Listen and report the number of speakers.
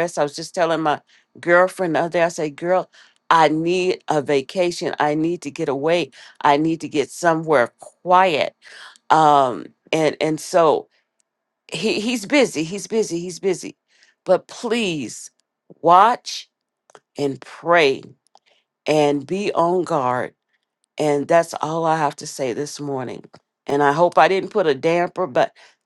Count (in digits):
1